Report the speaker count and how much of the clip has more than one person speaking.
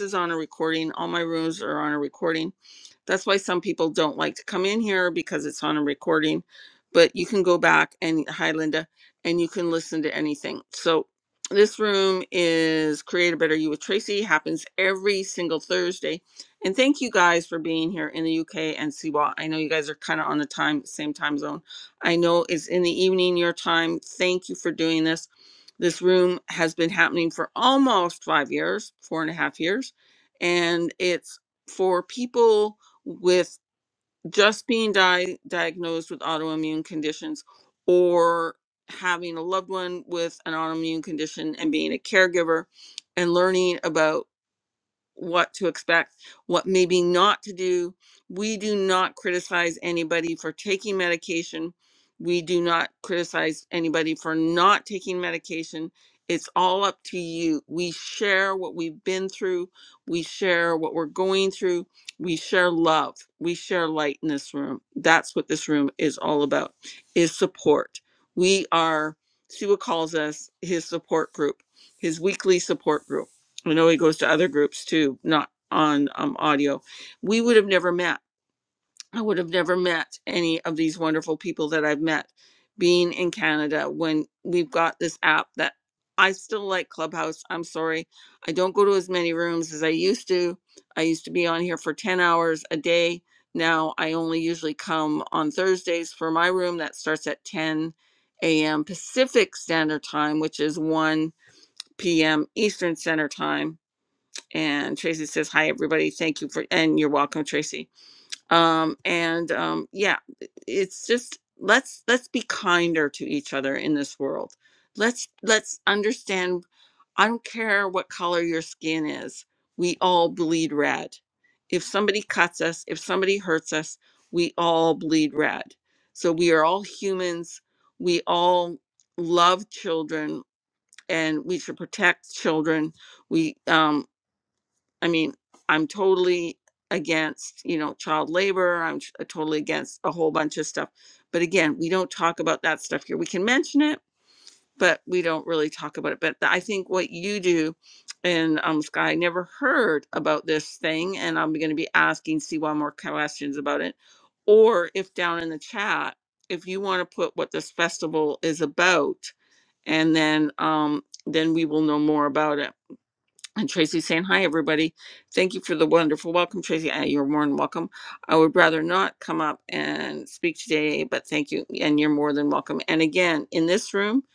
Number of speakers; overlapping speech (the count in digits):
1, no overlap